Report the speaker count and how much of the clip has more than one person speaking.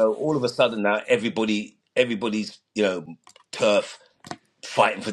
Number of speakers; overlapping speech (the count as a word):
one, no overlap